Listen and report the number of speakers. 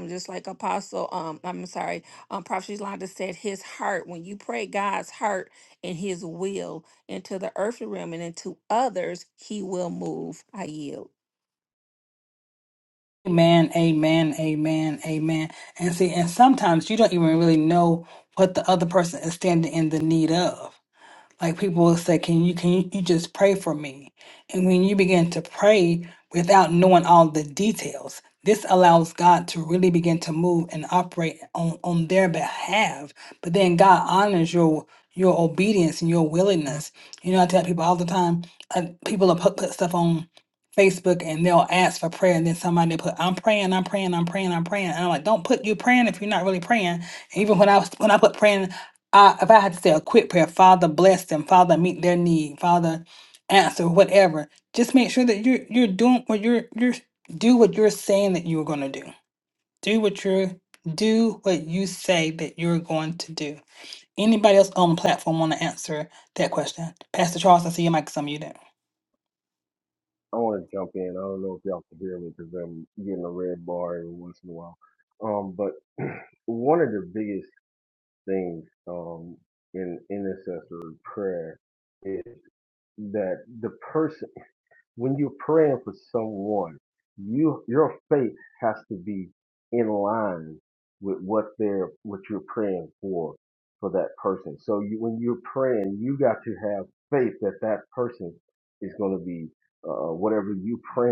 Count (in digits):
3